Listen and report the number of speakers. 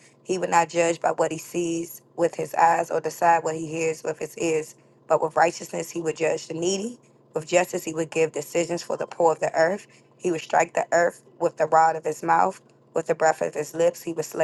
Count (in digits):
1